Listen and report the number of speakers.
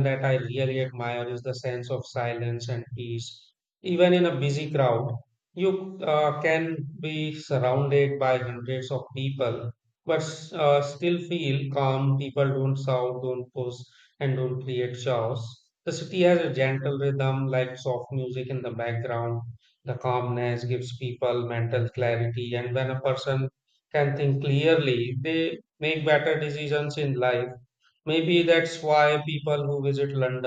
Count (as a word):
one